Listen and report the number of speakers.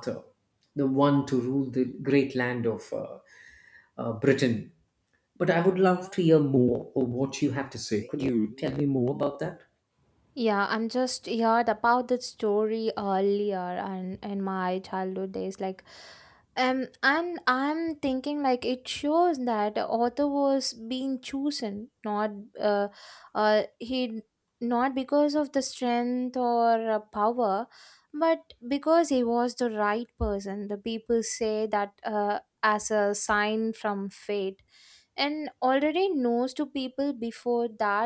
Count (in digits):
2